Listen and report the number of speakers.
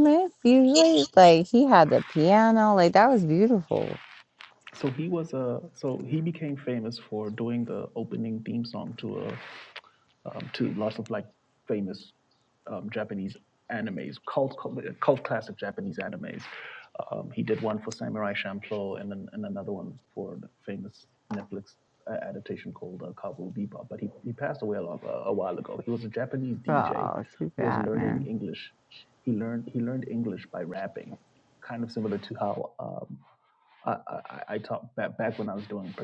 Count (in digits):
2